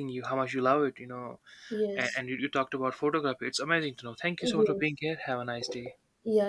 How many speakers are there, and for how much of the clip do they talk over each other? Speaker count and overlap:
2, about 9%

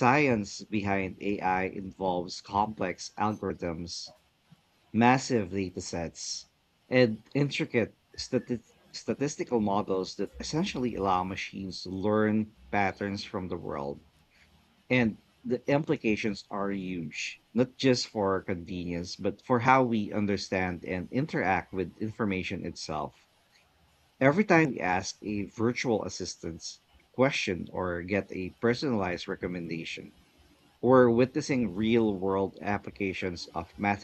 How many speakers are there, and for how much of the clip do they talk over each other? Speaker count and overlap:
1, no overlap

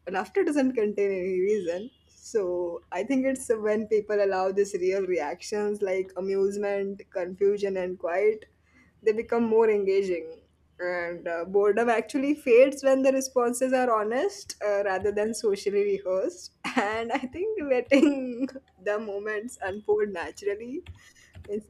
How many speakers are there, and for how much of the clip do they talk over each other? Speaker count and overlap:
1, no overlap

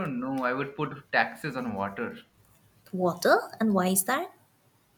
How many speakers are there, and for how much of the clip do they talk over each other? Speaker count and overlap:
2, no overlap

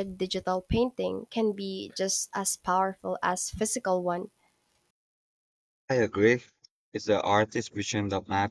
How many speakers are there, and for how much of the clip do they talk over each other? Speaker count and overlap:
2, no overlap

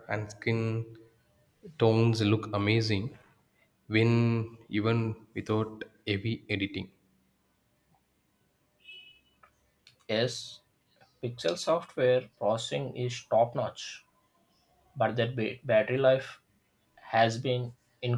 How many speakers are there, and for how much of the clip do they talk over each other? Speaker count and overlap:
2, no overlap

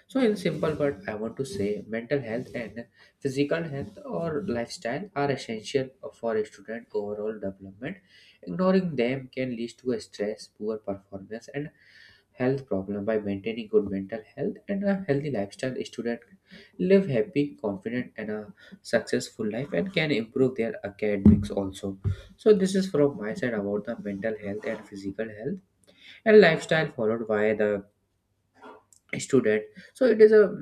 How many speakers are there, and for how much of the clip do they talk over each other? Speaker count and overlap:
1, no overlap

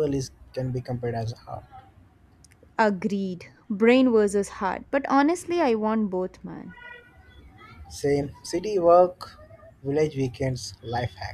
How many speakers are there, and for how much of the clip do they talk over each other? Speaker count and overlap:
2, no overlap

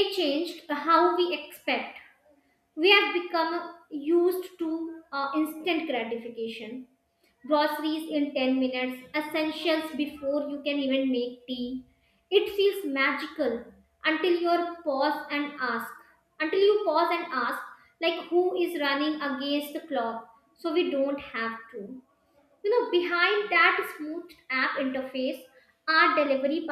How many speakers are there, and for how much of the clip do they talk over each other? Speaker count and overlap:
1, no overlap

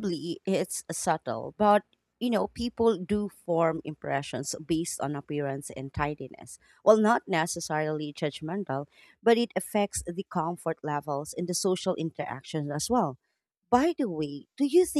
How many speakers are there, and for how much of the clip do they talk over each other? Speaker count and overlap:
1, no overlap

